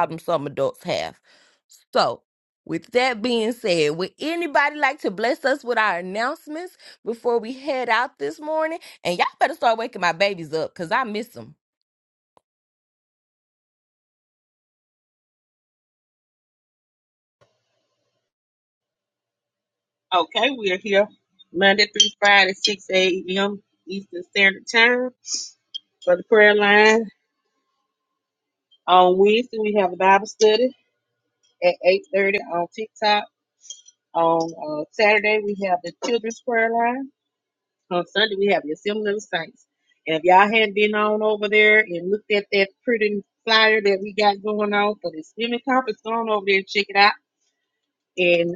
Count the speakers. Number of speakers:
two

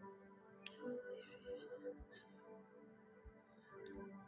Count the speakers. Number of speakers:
zero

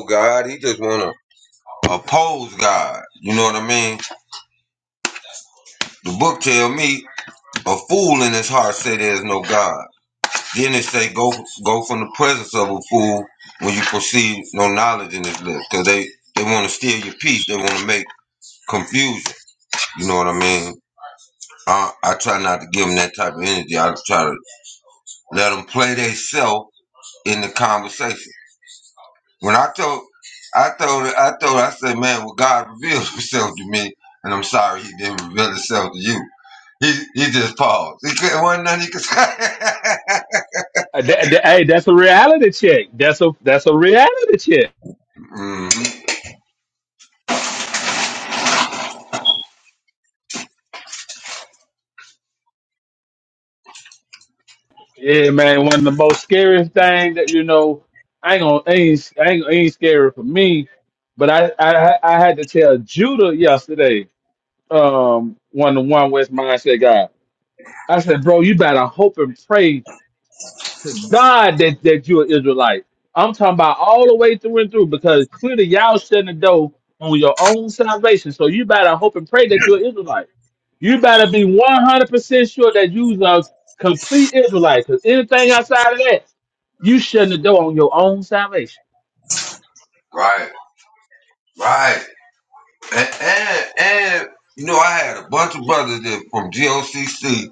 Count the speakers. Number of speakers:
two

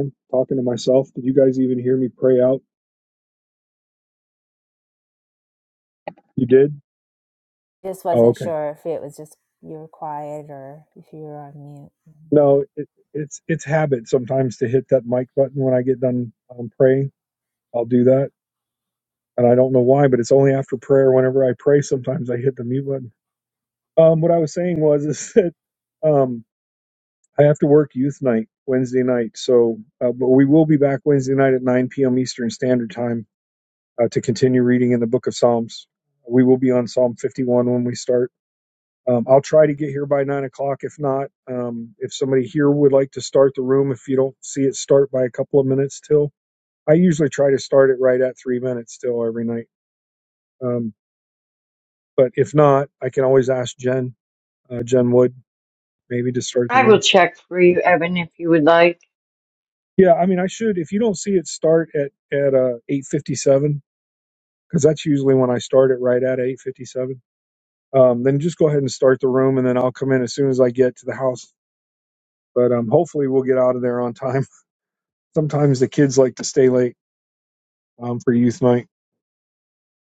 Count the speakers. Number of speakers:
three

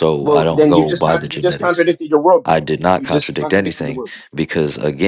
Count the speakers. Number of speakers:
two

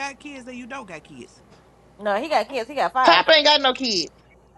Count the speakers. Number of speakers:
three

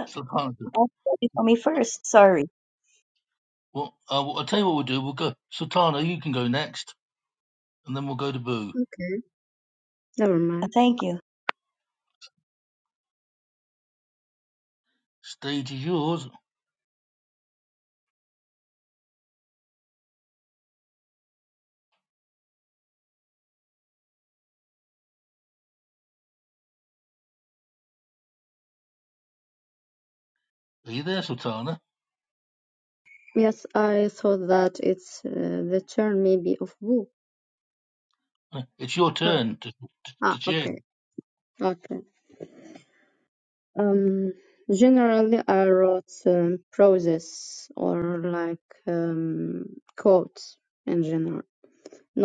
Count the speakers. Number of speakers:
three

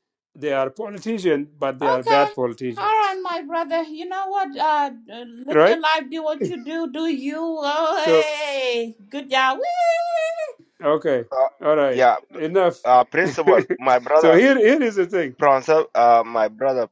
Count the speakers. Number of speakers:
three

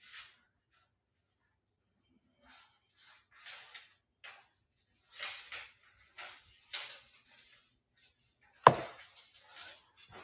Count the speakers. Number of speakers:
zero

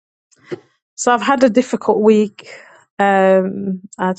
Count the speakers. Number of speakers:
one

